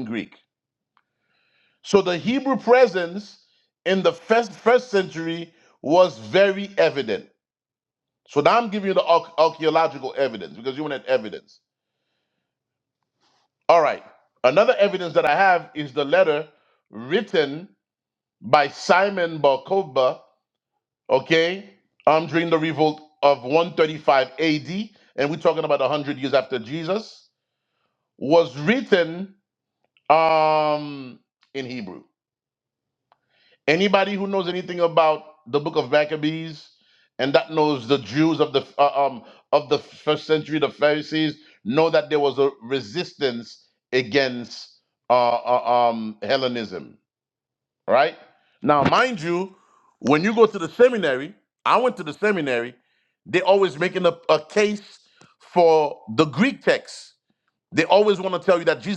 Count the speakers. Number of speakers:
1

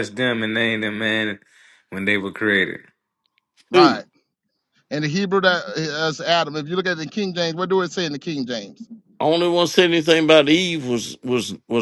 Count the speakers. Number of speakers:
3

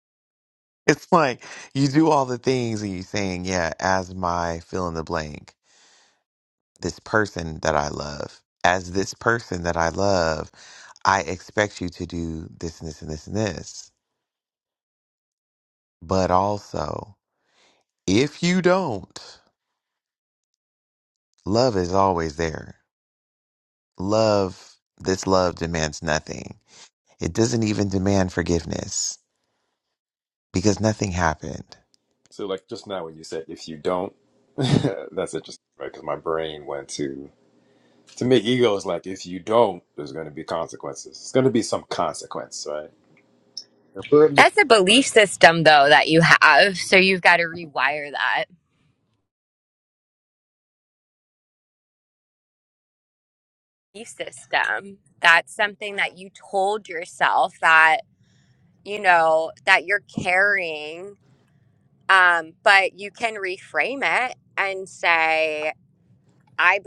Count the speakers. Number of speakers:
3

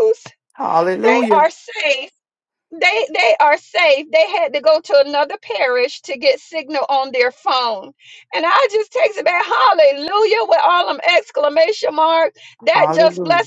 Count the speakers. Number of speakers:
2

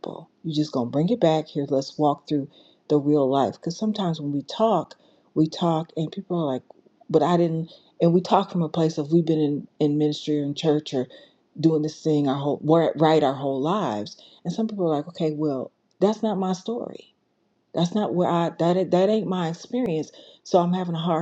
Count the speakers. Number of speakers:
1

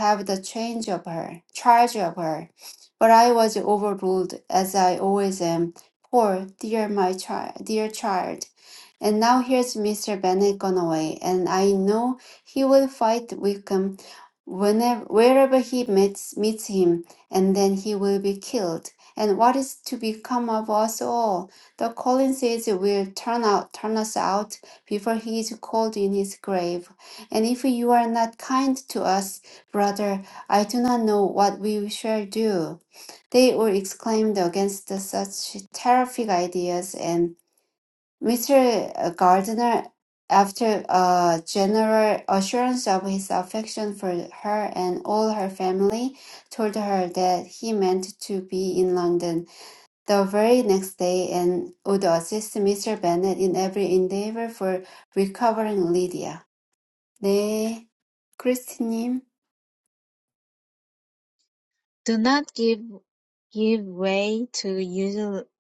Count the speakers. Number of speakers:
2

